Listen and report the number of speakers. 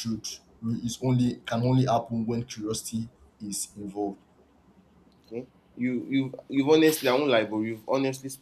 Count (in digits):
2